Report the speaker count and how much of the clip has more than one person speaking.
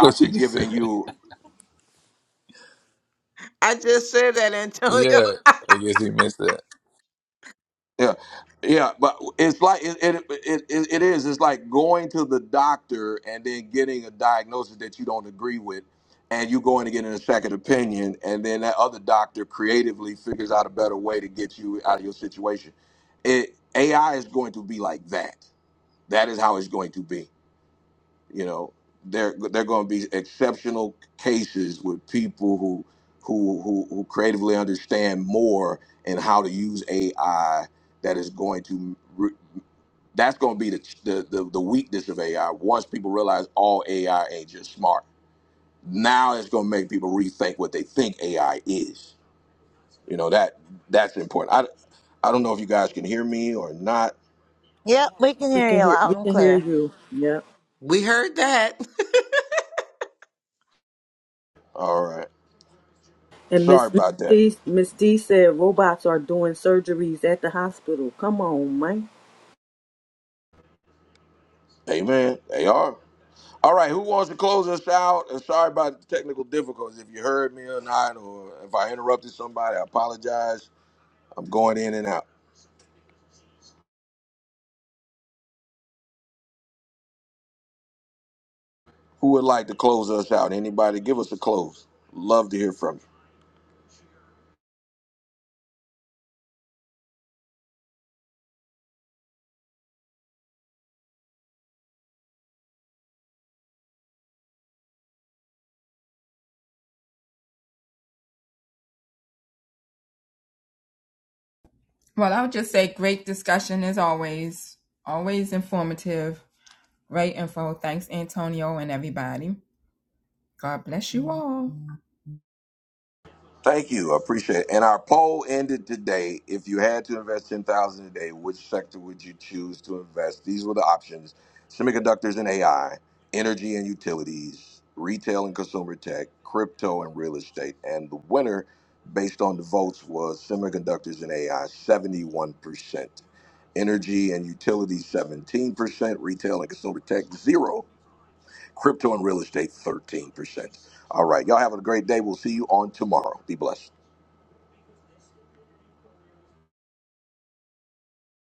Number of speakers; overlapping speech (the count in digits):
6, about 2%